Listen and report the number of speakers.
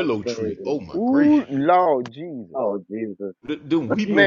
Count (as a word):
three